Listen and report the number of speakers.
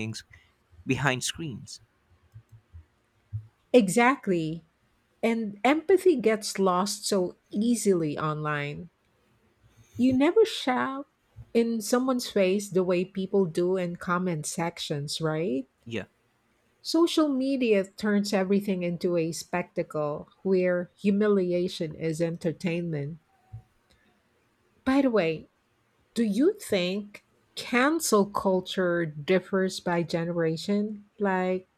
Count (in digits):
2